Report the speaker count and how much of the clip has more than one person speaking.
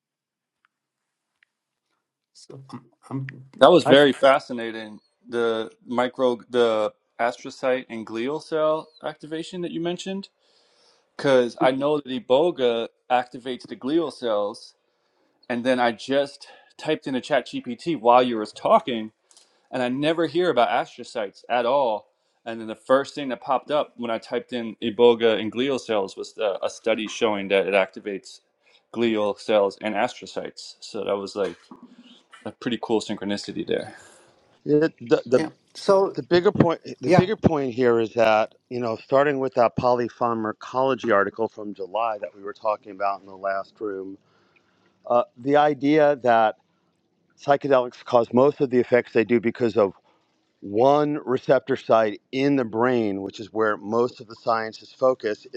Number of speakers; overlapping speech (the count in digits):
3, about 1%